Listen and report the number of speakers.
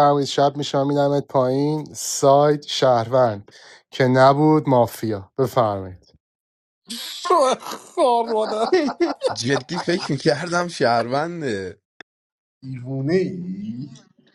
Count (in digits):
4